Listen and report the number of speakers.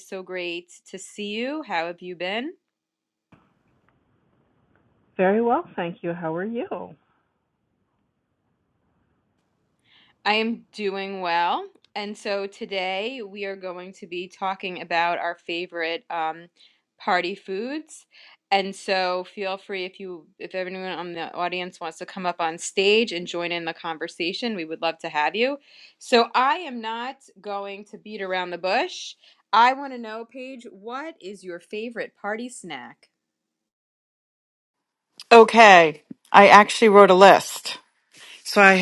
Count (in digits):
3